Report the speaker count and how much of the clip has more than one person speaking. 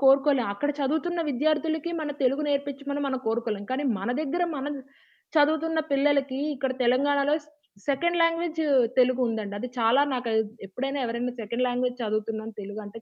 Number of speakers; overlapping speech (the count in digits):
1, no overlap